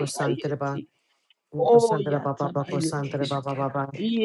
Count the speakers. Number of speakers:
2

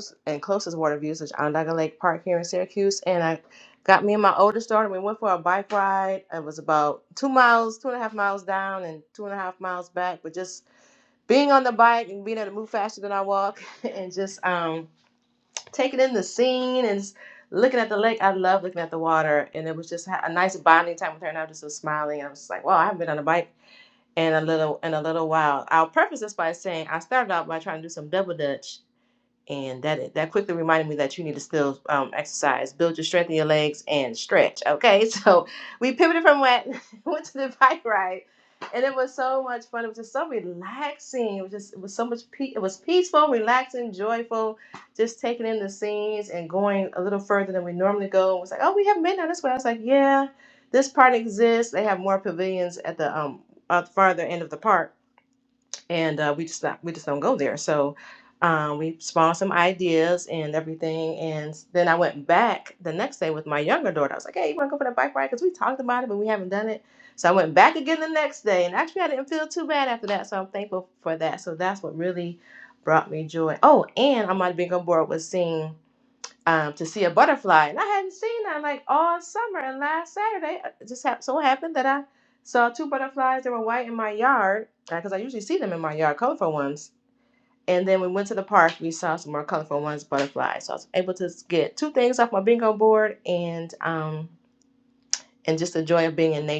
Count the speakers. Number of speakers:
1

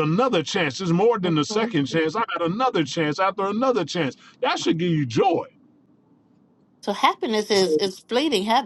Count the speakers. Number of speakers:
2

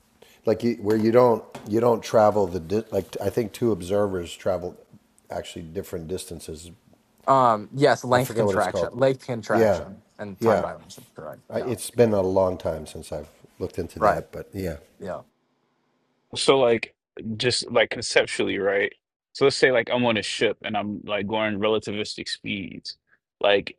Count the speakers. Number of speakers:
3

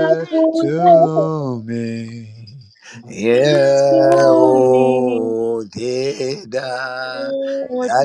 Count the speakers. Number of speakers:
2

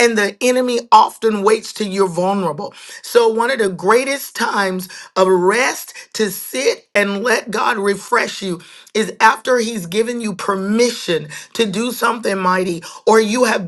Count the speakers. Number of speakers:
1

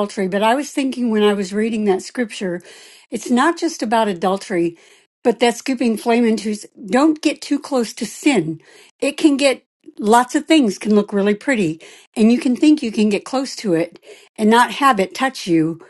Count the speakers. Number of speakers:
1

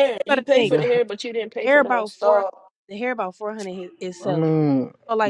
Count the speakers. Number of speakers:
3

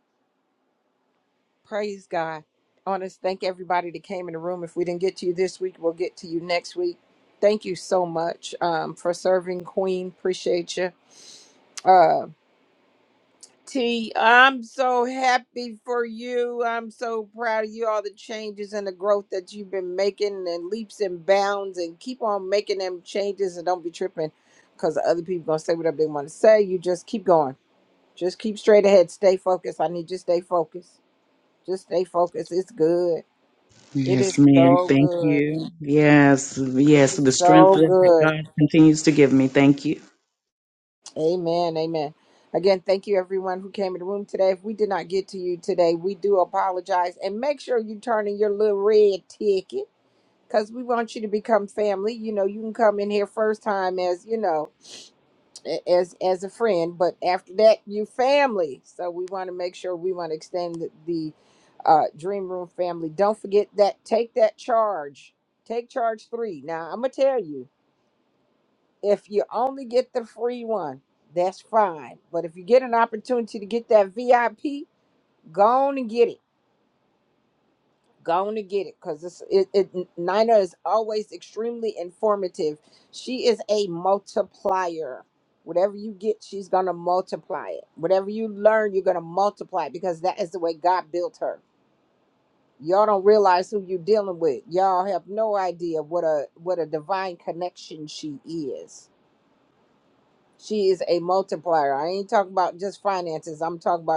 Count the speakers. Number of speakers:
2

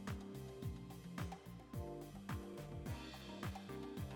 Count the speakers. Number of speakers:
0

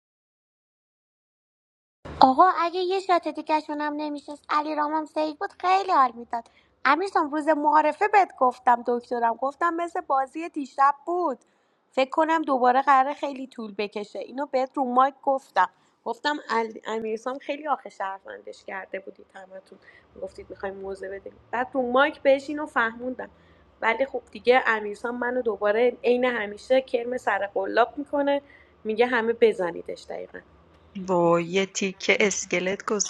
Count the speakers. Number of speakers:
2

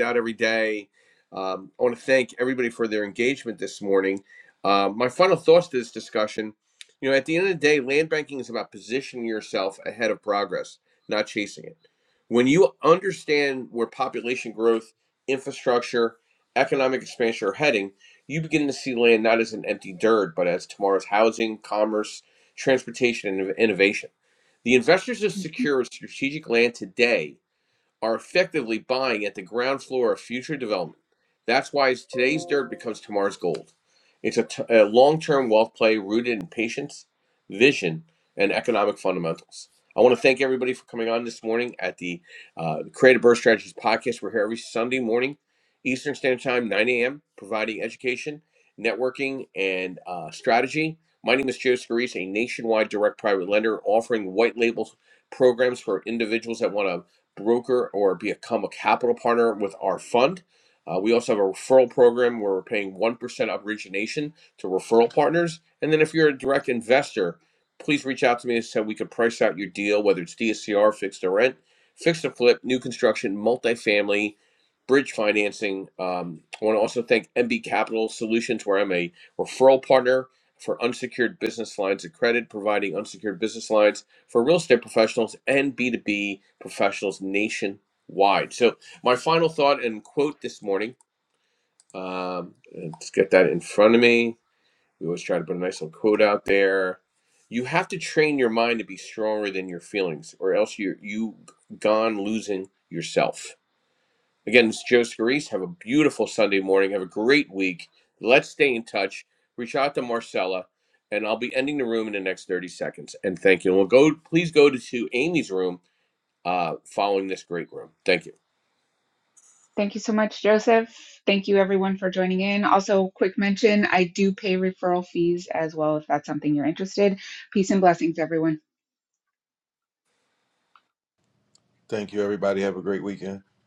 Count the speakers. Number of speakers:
3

